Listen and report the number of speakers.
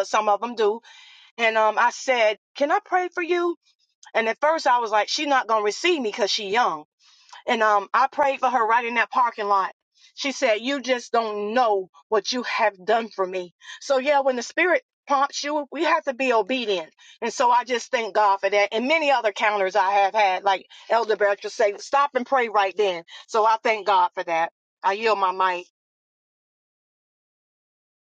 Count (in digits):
1